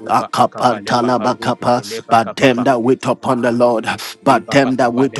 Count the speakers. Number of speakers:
2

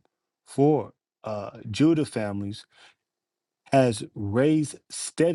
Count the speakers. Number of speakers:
1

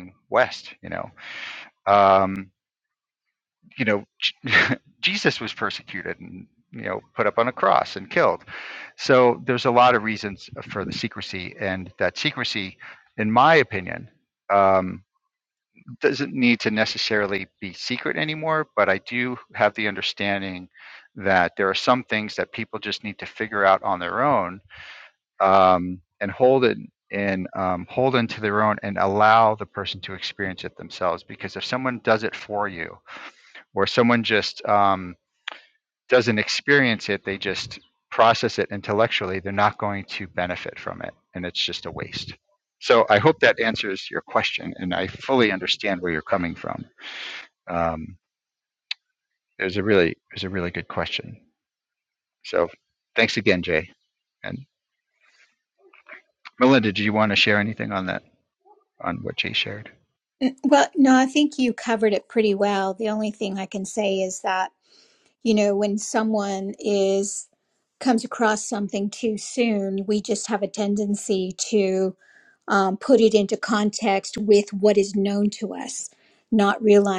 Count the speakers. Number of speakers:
2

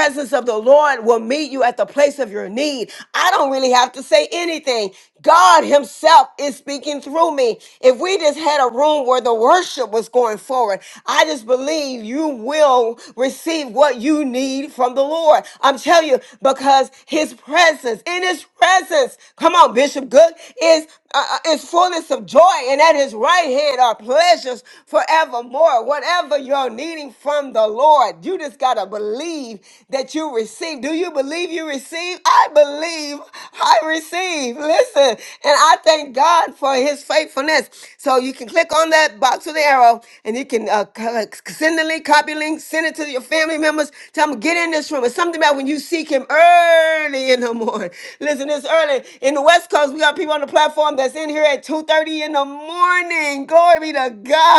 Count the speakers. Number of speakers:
1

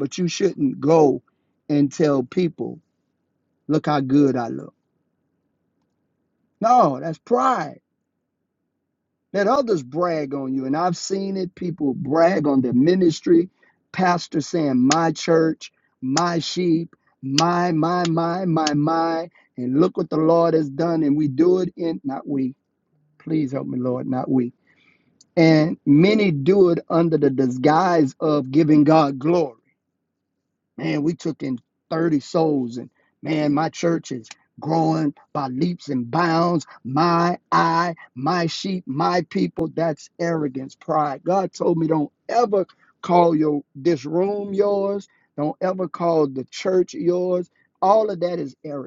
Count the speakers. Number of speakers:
1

